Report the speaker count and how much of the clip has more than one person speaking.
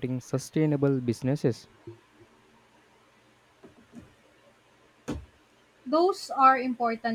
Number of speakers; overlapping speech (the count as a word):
two, no overlap